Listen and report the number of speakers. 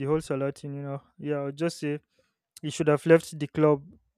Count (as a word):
one